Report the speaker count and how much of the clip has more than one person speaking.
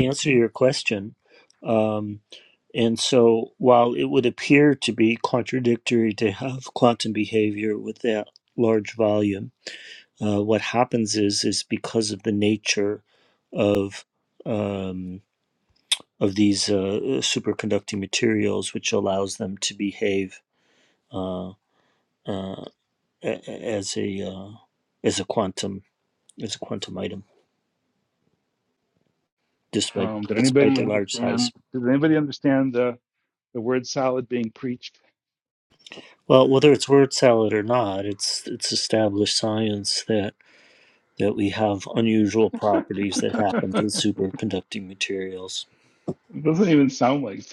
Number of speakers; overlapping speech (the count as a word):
two, about 5%